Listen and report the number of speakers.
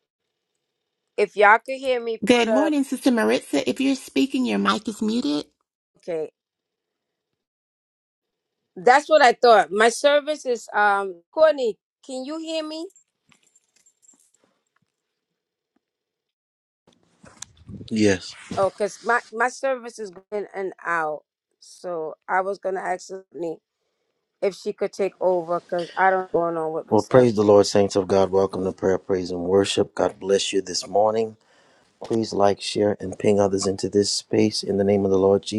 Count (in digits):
3